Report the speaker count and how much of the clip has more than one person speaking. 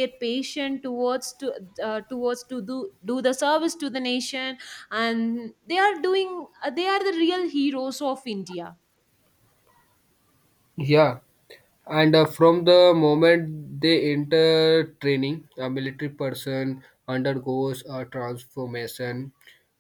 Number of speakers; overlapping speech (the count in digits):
2, no overlap